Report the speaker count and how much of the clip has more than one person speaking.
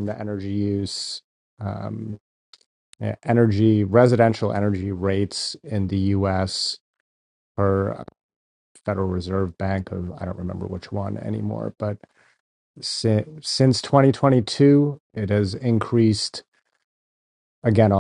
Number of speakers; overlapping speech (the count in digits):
1, no overlap